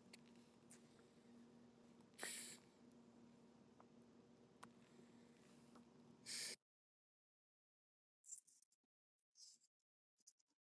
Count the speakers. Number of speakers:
0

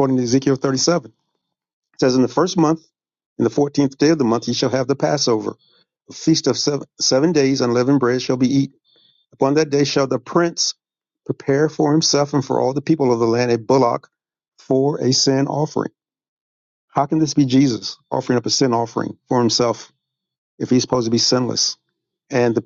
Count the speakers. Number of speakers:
1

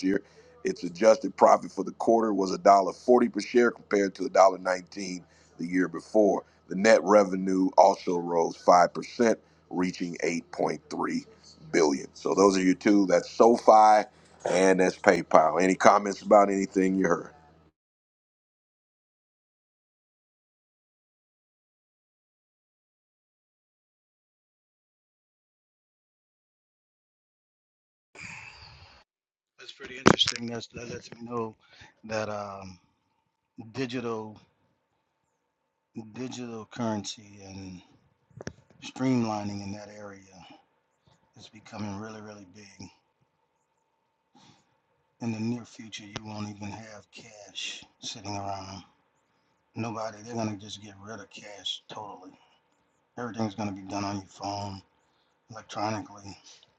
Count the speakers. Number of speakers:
2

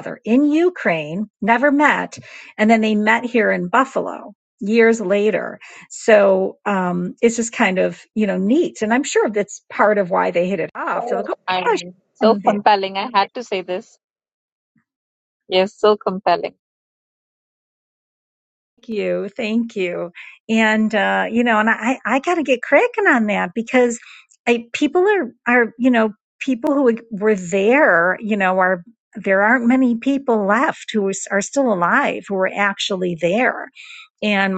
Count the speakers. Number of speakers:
2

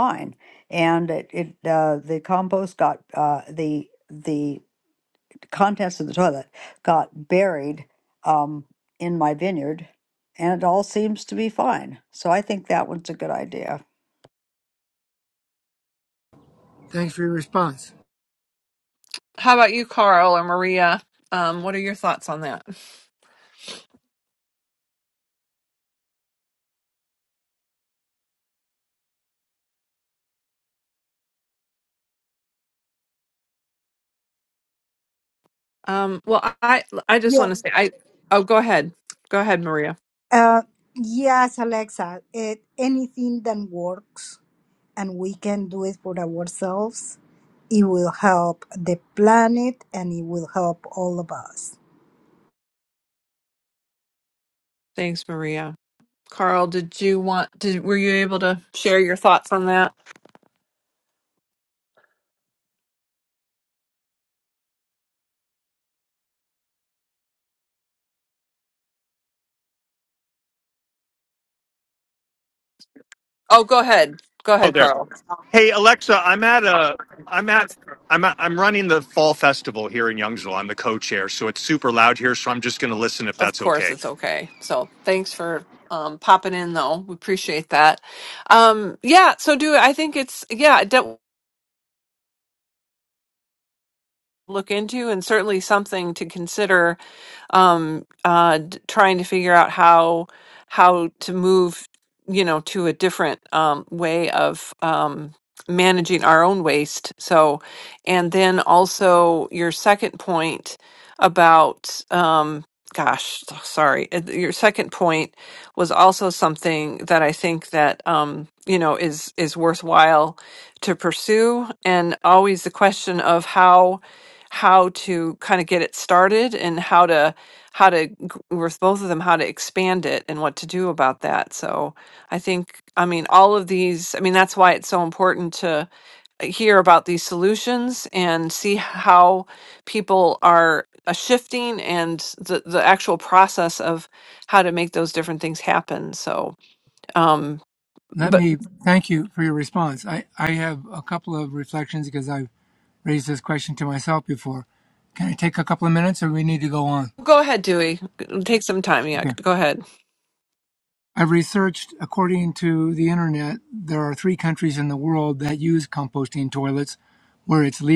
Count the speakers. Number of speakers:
5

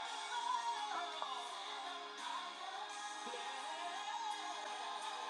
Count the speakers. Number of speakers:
0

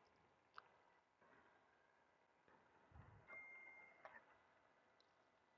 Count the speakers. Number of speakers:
0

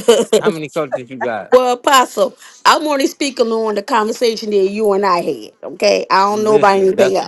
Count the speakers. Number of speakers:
2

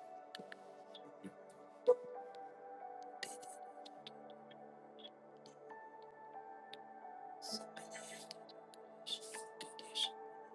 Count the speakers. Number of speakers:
0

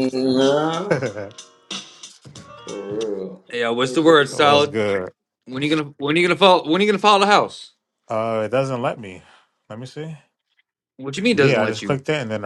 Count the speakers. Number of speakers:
3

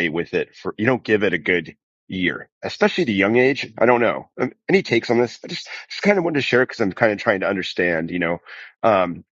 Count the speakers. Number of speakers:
1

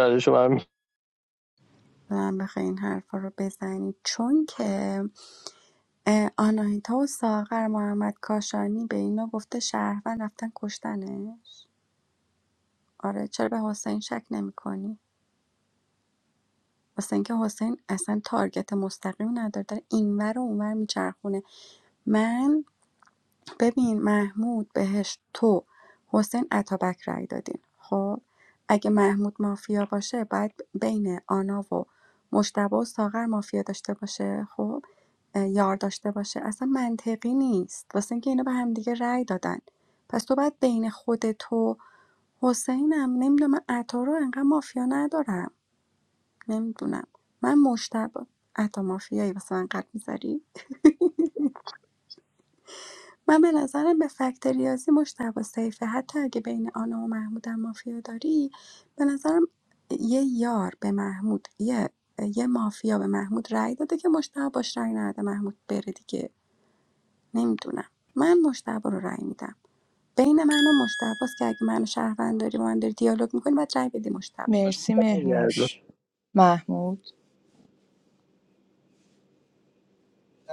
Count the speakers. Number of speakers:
3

